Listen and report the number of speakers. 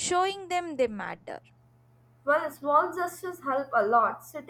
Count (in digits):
2